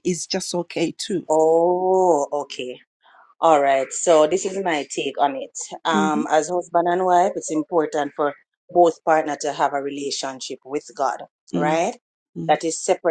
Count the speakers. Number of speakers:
2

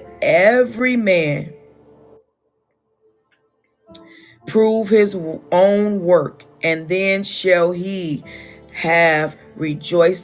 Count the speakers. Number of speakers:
1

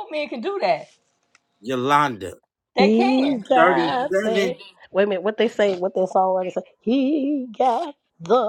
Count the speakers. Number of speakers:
3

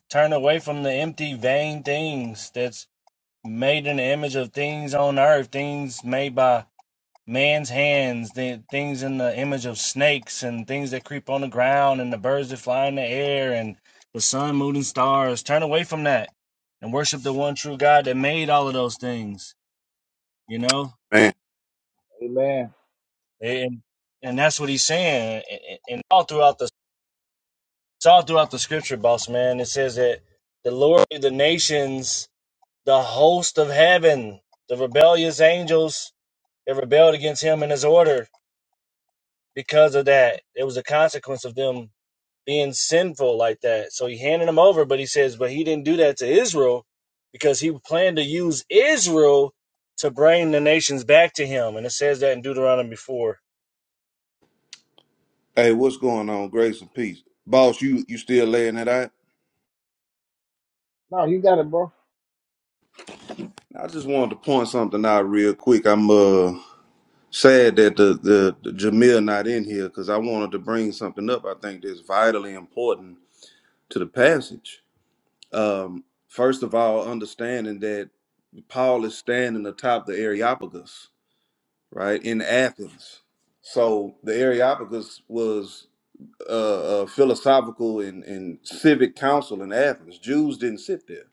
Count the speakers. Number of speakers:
3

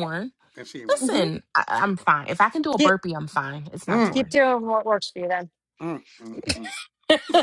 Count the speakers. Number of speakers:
3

